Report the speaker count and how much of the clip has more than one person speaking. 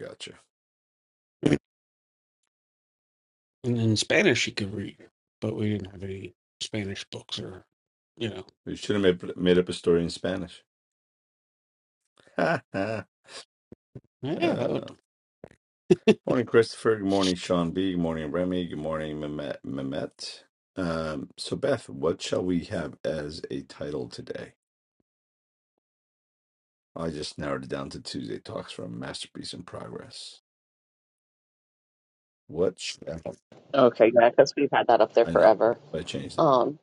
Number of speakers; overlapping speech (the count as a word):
three, about 2%